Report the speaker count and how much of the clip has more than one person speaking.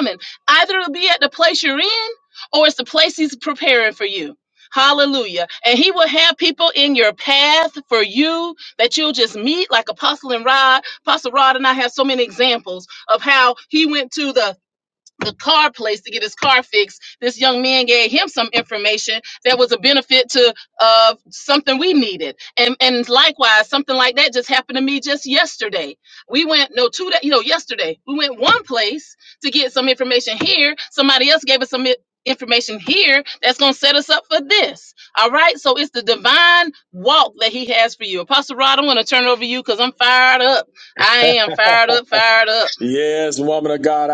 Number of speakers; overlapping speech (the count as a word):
two, no overlap